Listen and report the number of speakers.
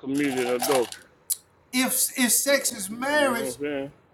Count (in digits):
2